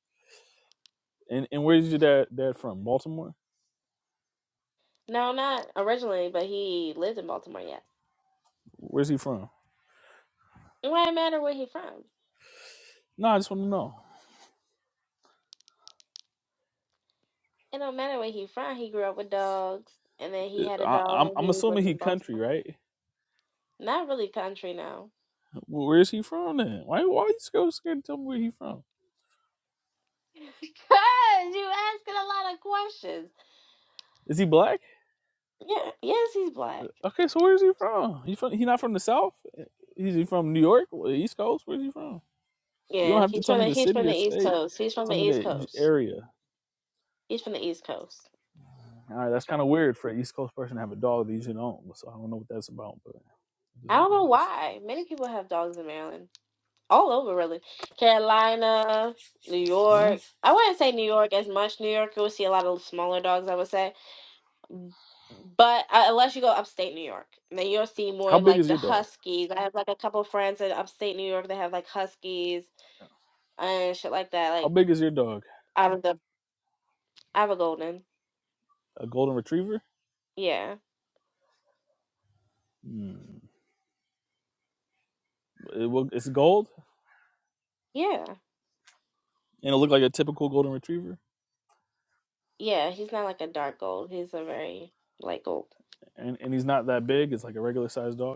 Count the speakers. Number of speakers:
two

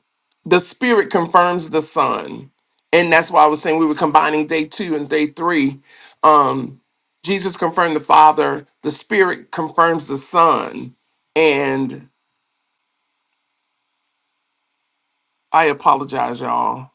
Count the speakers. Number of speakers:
one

